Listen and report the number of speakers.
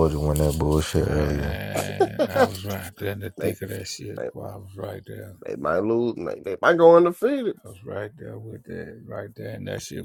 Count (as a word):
three